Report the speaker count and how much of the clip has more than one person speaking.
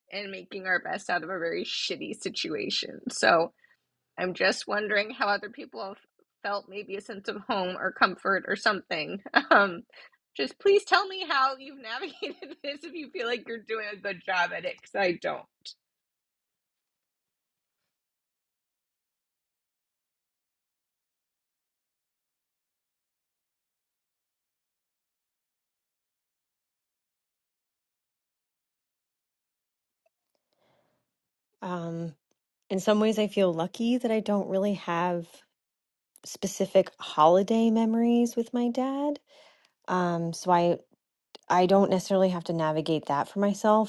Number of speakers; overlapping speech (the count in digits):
2, no overlap